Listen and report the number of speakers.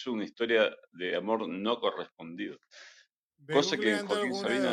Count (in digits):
1